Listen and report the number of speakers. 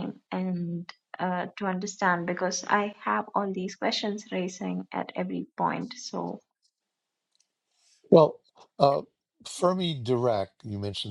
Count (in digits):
2